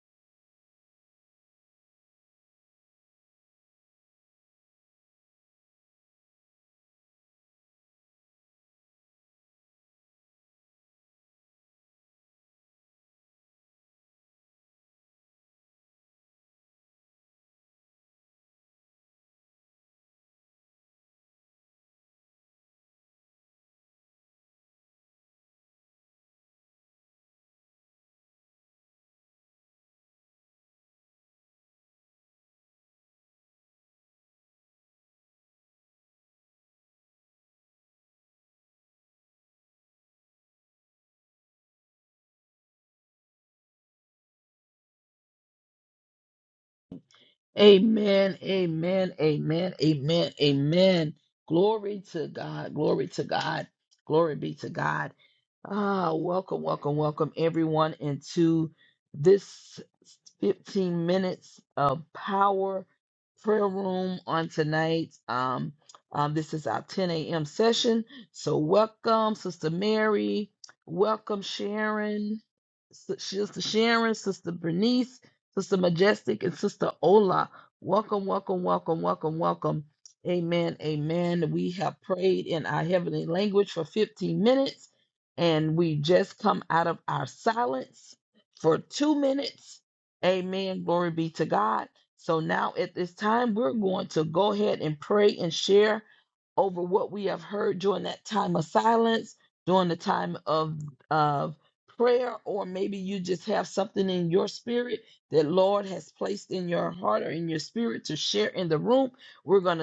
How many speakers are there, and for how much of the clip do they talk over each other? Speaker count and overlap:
1, no overlap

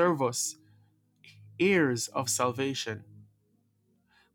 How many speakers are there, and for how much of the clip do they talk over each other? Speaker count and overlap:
1, no overlap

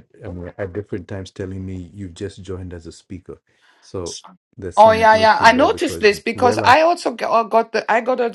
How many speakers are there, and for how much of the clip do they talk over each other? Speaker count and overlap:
2, about 24%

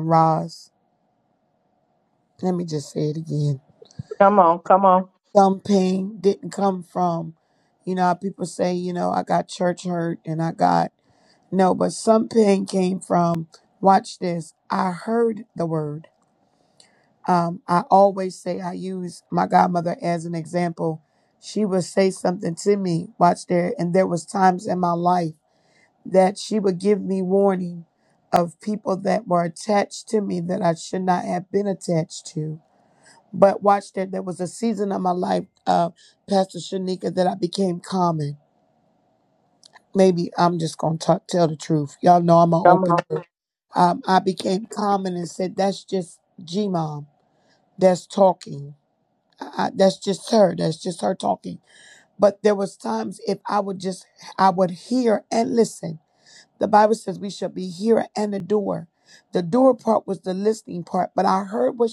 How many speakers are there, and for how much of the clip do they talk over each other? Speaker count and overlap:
2, about 1%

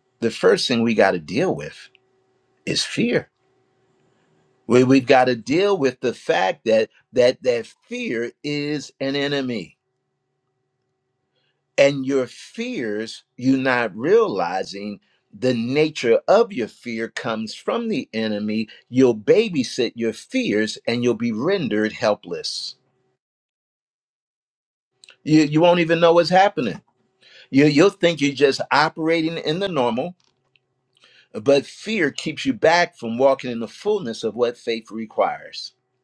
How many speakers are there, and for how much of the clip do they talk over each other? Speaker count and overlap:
1, no overlap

